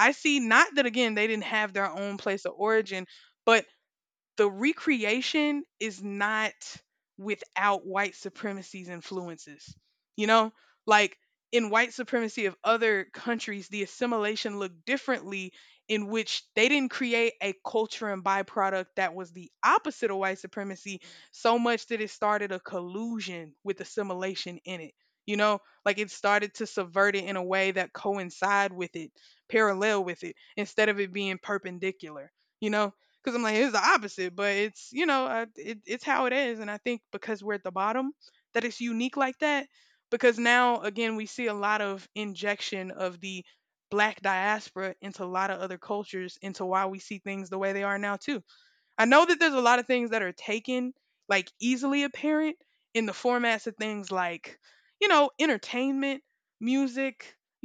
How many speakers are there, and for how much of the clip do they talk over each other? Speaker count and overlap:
1, no overlap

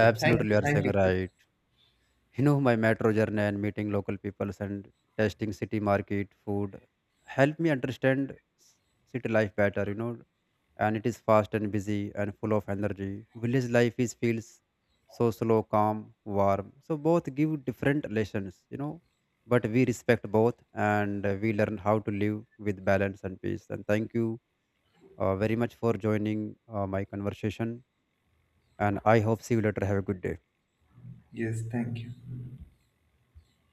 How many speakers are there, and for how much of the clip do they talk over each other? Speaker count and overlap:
2, about 3%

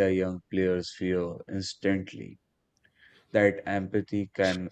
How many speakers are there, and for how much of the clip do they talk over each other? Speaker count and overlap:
1, no overlap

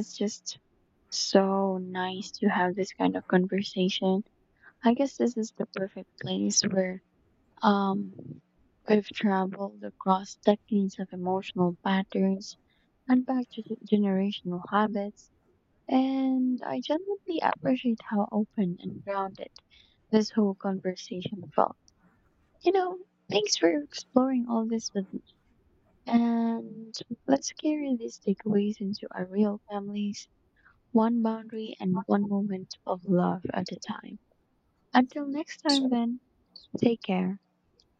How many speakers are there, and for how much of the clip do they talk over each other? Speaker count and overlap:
1, no overlap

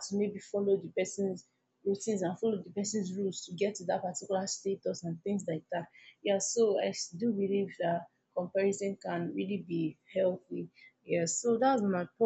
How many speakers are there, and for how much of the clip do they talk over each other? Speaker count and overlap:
1, no overlap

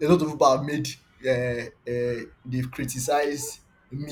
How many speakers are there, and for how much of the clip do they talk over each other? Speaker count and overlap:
1, no overlap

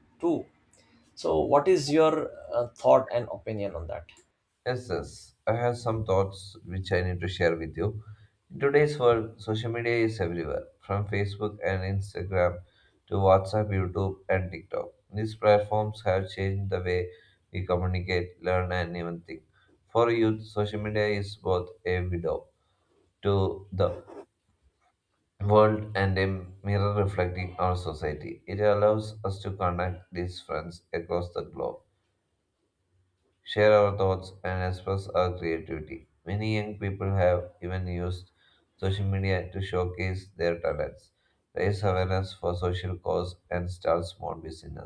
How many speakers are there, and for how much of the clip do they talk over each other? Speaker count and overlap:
2, no overlap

